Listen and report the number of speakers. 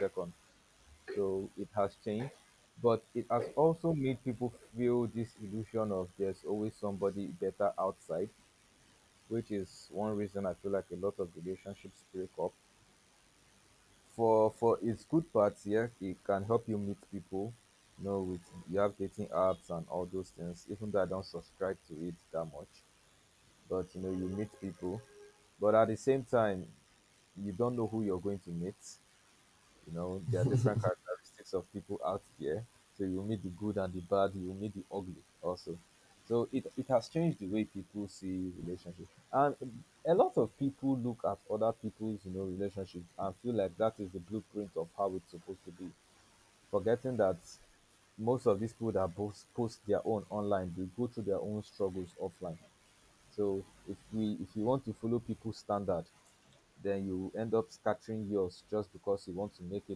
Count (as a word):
one